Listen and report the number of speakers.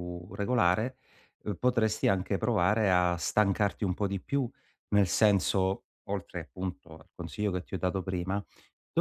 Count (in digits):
1